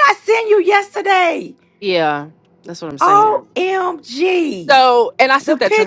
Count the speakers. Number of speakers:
2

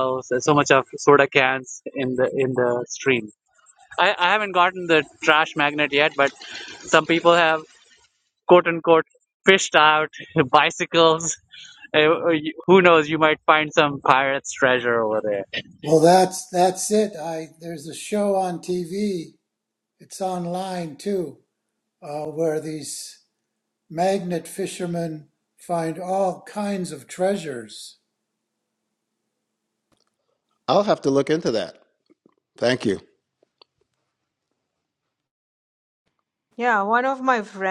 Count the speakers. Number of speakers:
4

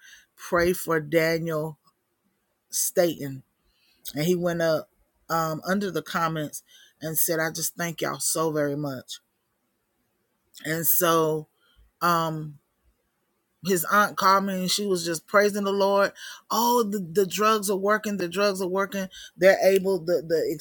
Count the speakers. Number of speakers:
1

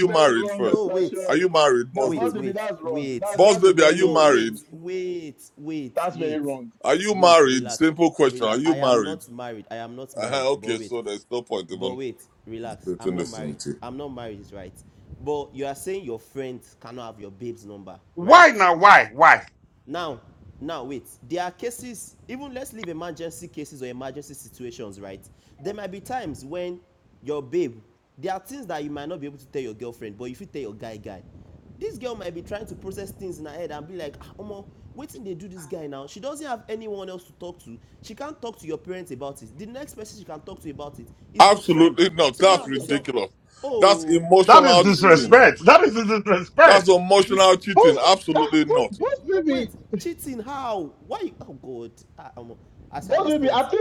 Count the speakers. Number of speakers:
4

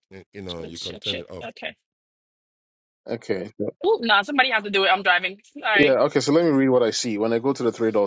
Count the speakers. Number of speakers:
3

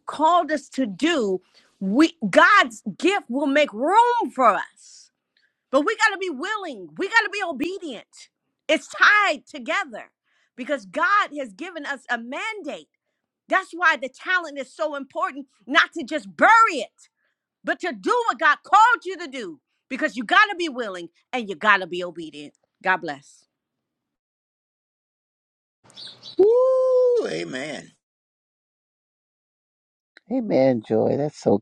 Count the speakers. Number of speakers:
3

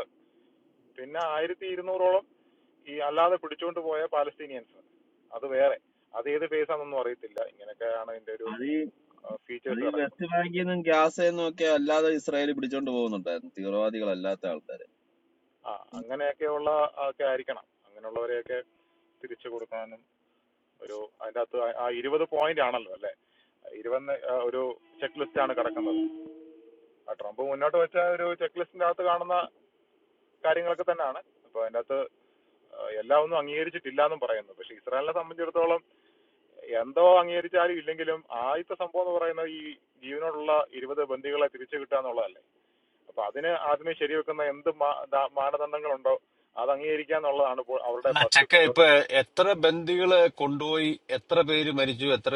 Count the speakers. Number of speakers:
3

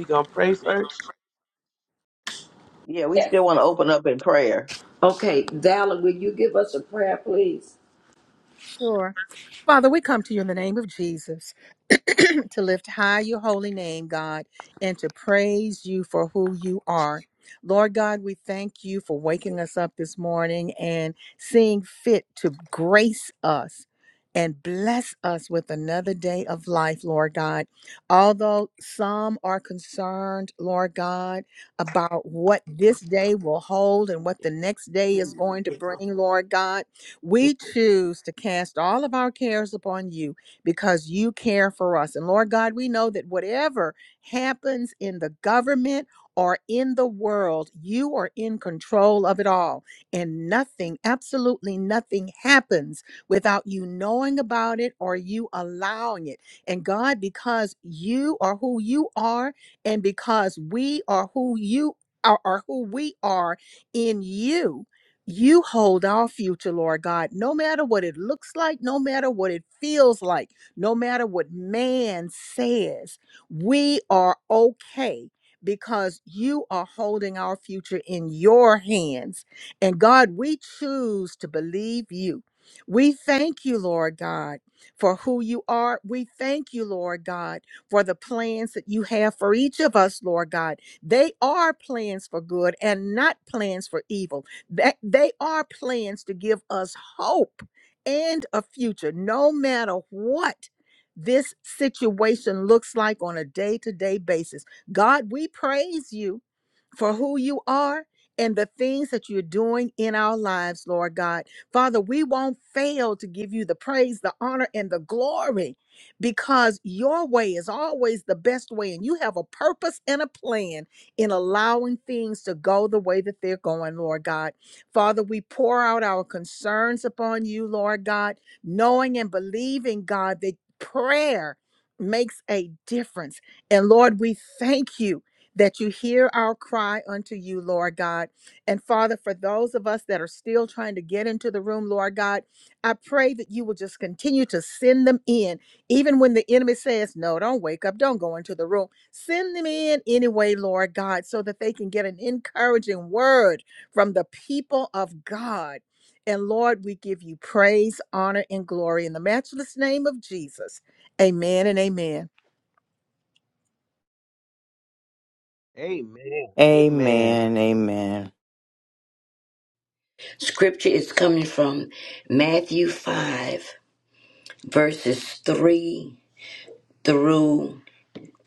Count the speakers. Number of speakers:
5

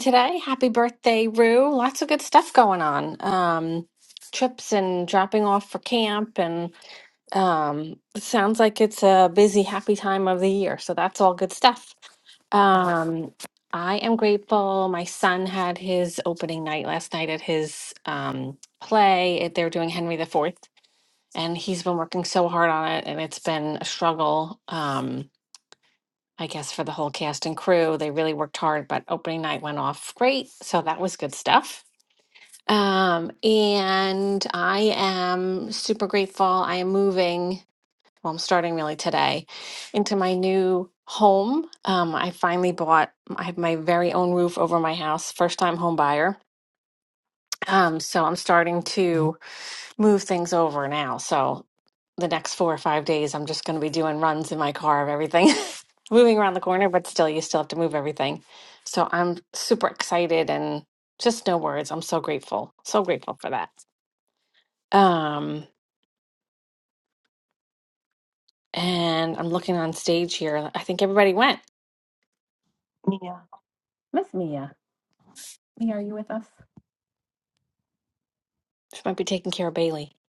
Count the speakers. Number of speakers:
1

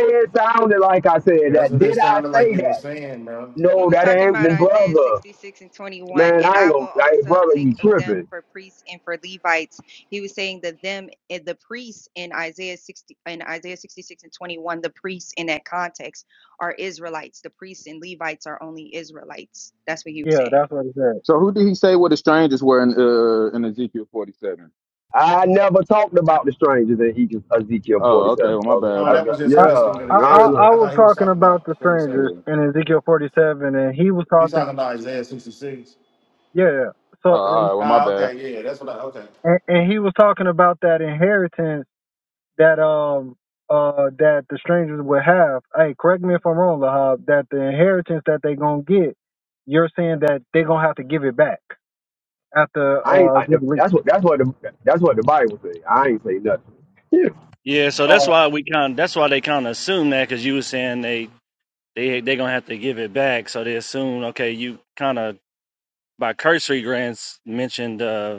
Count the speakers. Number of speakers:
6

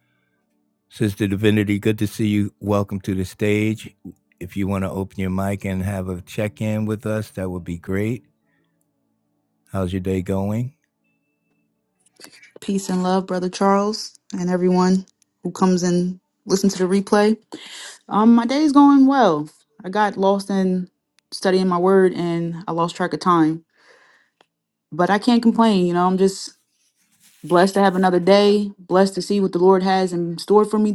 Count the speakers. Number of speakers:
2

